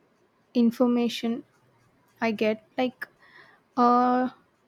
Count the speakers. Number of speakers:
1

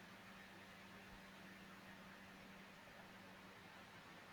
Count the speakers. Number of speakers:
0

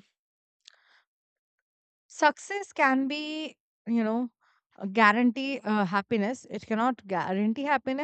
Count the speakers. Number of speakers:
1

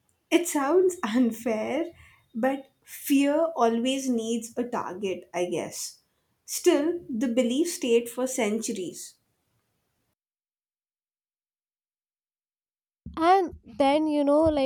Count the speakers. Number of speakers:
2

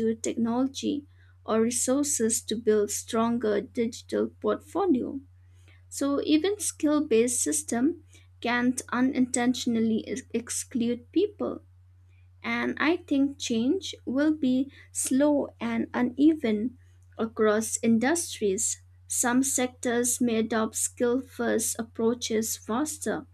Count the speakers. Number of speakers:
1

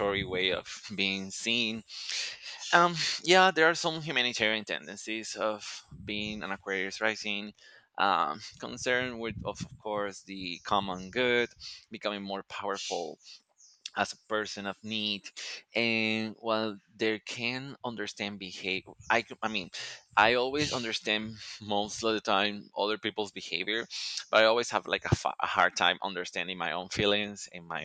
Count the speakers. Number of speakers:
1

